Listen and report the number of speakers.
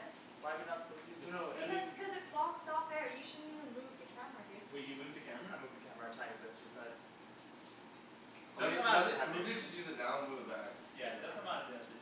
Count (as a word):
four